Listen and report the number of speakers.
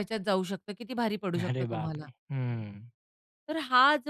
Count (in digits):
2